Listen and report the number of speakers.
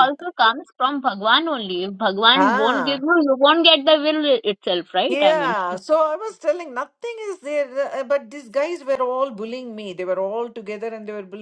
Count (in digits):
2